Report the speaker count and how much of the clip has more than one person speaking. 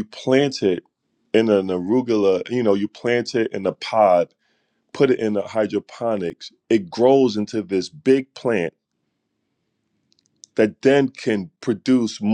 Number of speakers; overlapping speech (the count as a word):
one, no overlap